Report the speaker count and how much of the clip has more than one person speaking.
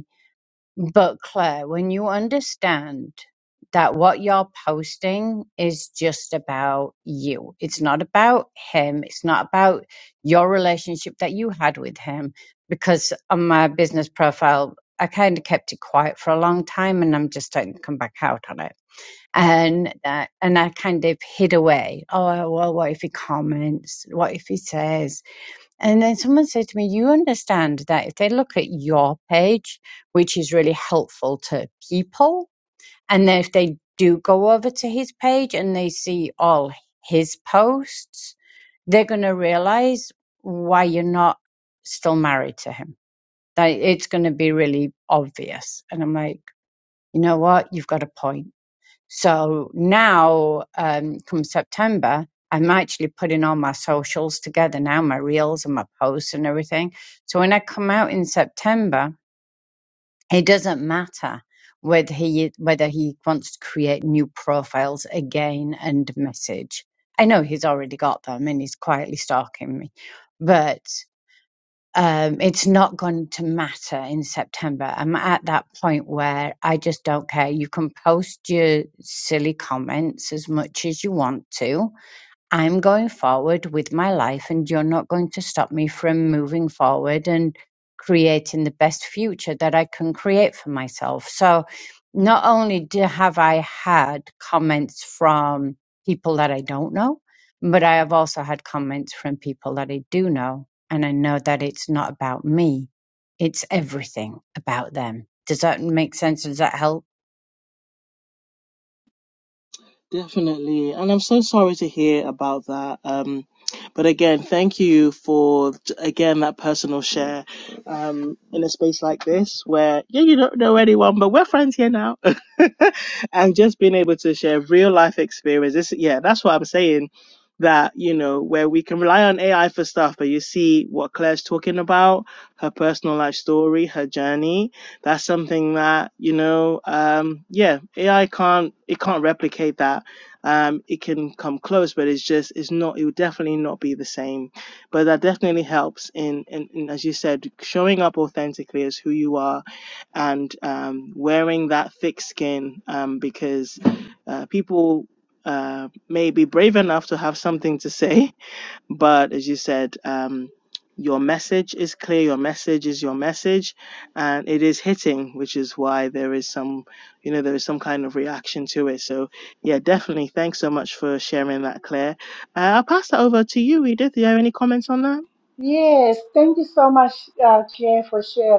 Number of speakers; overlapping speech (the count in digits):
3, no overlap